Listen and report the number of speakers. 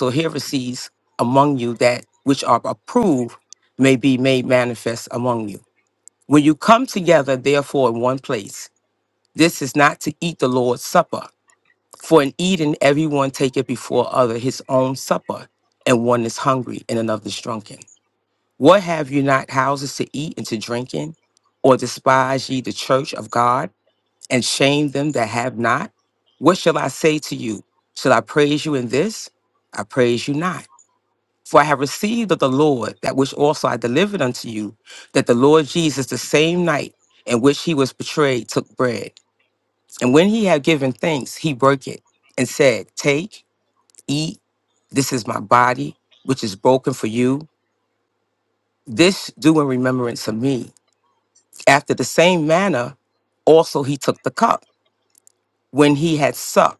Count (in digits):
1